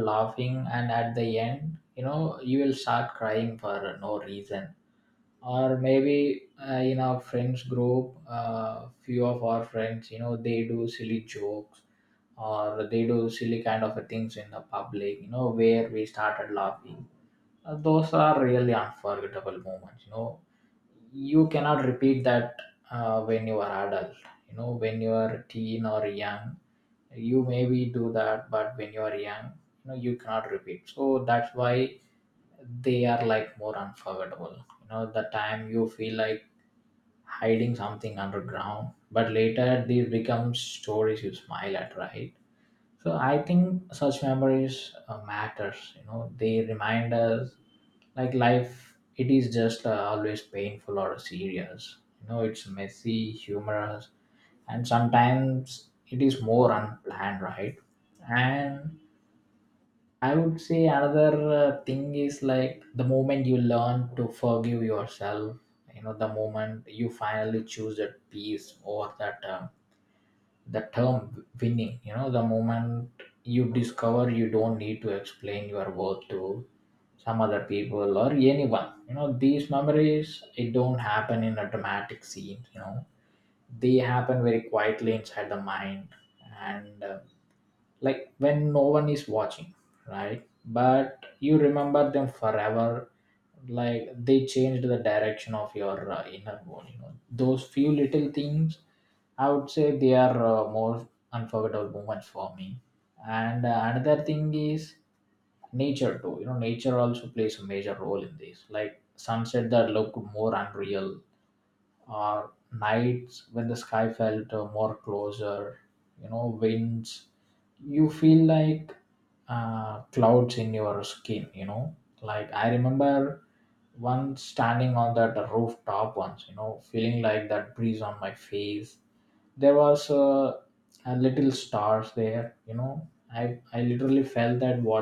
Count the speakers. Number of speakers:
one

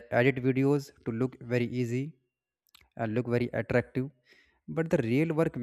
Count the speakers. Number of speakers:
one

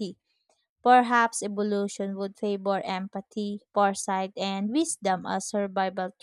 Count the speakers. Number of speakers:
one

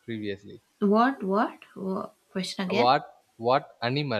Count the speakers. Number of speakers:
two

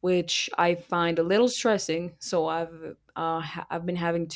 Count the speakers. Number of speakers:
one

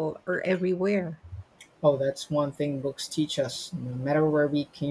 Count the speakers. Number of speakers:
two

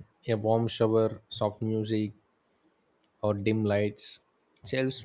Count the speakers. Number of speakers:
one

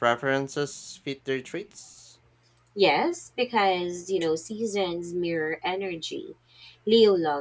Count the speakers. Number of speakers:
two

